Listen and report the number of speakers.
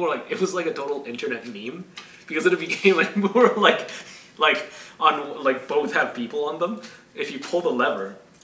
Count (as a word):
one